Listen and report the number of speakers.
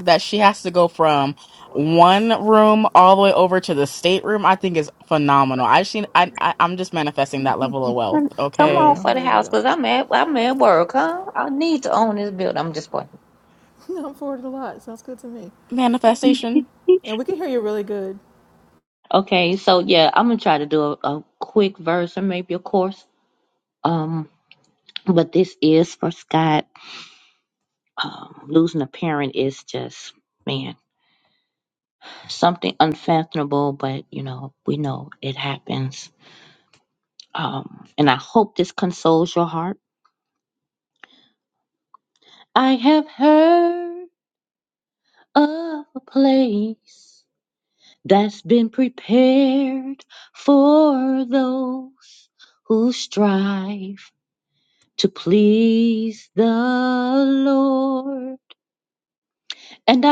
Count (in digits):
3